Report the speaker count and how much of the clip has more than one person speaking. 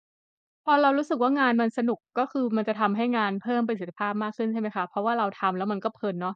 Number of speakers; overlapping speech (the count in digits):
1, no overlap